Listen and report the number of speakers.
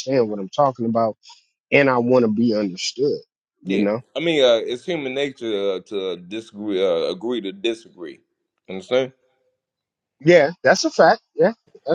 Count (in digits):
2